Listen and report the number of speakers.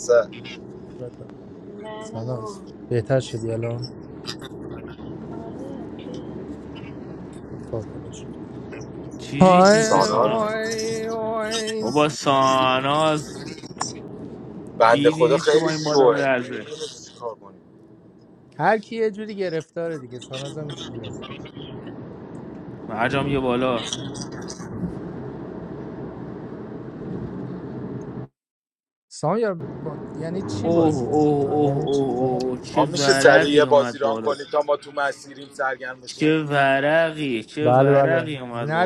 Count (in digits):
4